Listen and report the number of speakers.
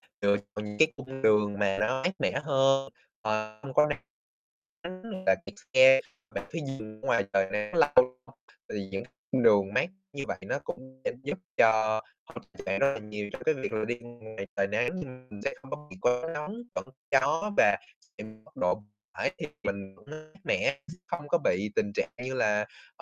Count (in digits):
1